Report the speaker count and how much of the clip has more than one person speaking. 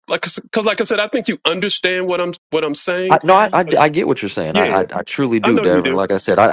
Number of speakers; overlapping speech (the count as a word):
two, about 17%